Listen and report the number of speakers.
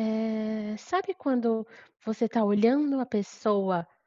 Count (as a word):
one